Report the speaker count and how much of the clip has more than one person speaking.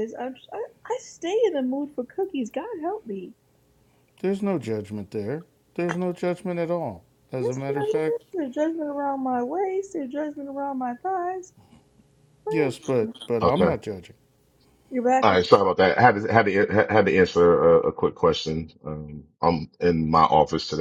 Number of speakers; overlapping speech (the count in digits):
3, about 10%